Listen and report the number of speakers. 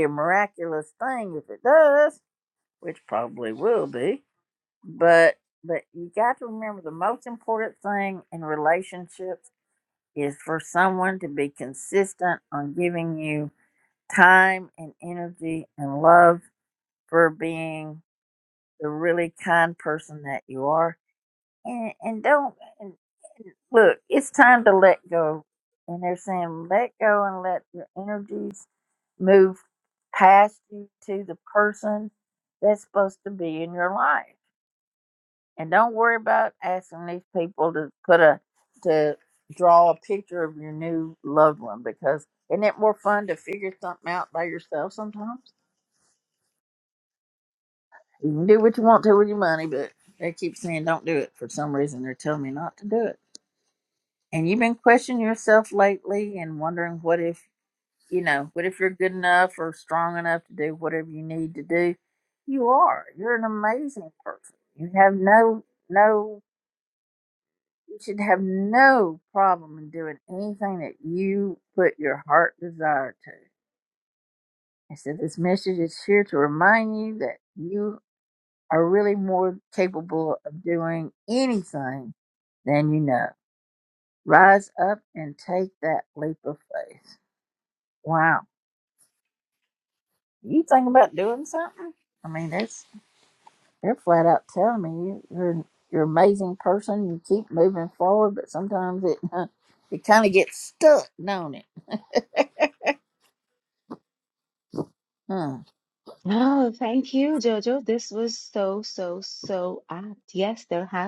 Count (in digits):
2